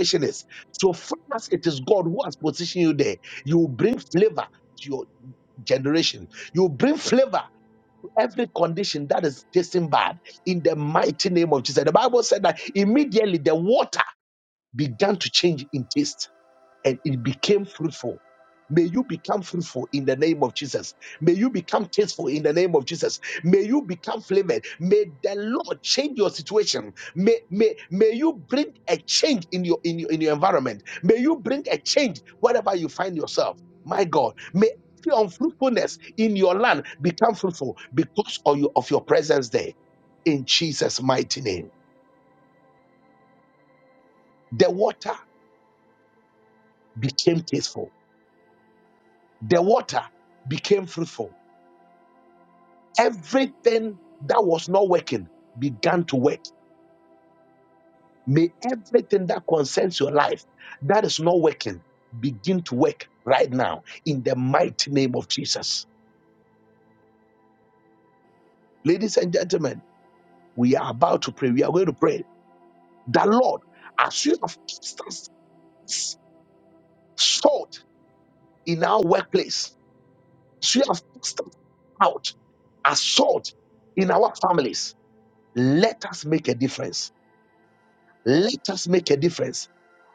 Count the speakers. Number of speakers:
one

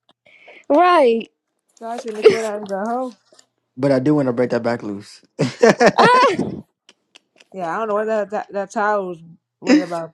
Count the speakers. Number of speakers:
three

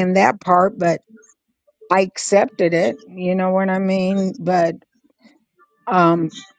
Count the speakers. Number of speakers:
one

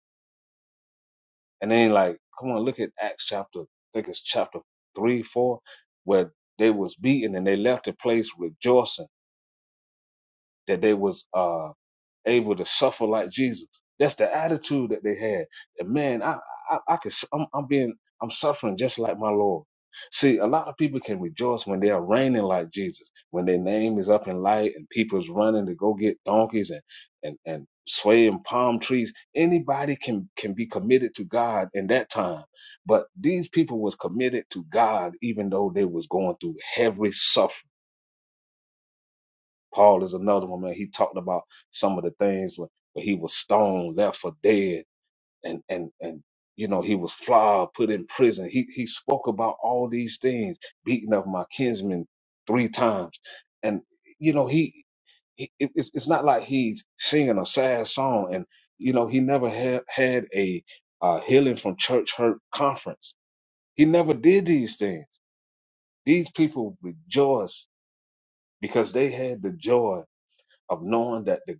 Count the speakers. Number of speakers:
one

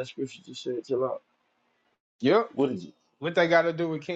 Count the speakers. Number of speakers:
two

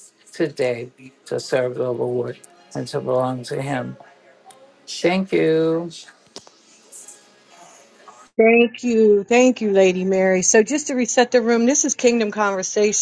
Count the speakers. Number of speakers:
two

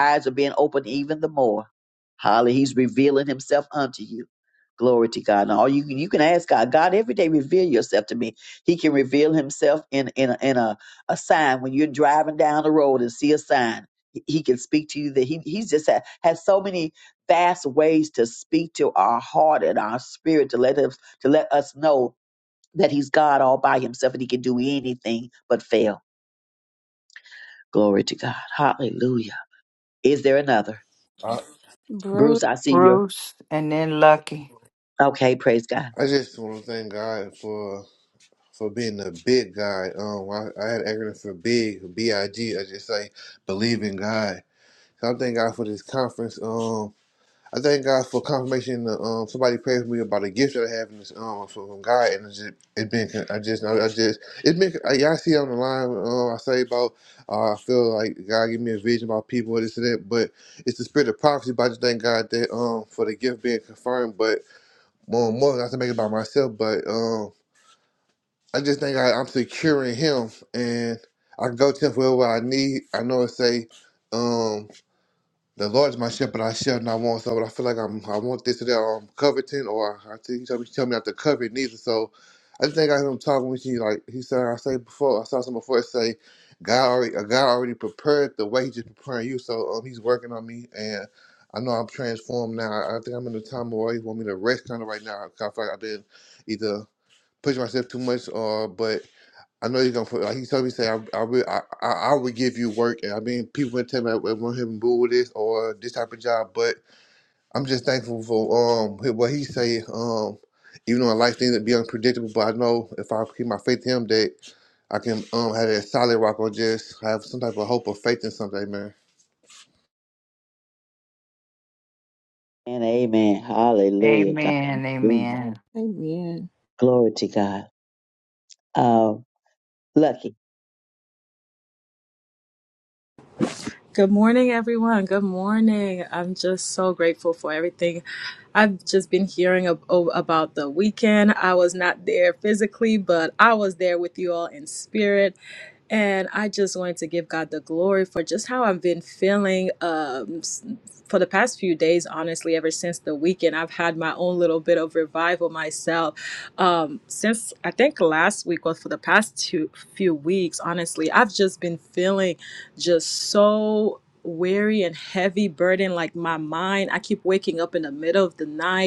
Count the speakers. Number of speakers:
five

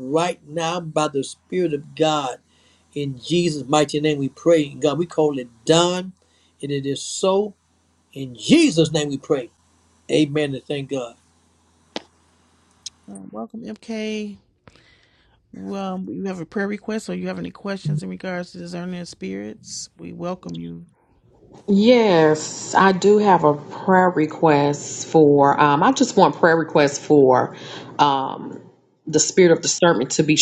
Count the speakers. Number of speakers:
three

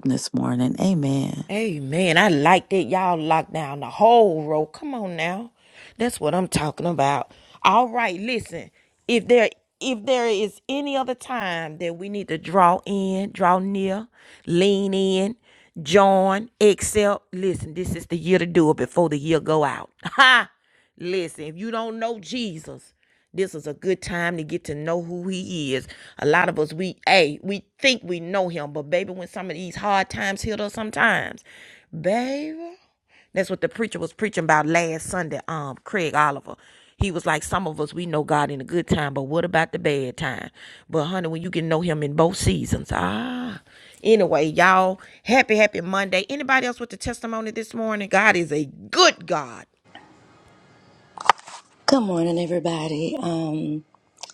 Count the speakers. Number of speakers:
three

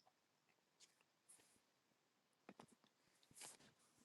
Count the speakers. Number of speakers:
zero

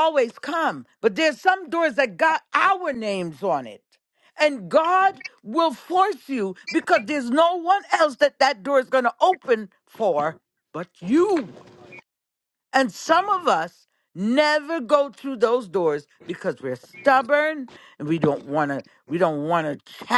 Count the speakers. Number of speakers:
one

